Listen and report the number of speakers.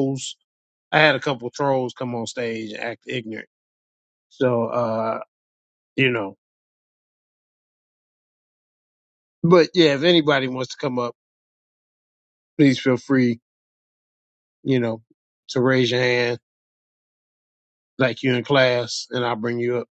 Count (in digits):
1